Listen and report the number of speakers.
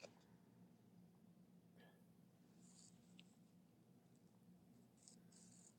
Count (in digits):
0